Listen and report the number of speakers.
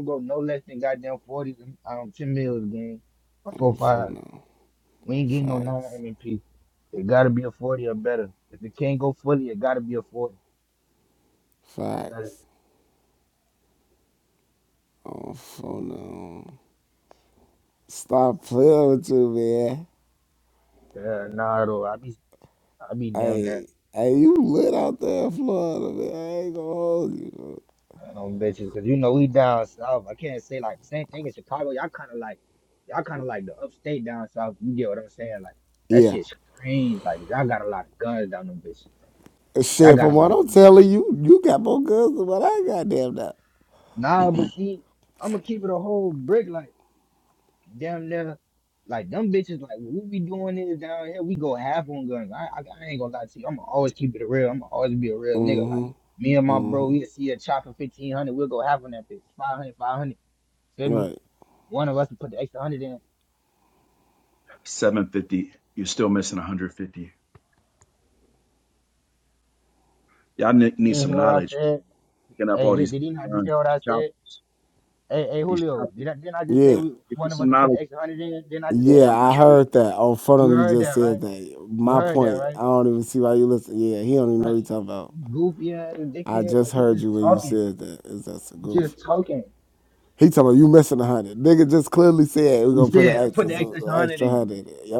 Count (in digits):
3